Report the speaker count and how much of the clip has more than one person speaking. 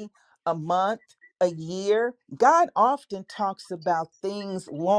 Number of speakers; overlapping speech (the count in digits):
1, no overlap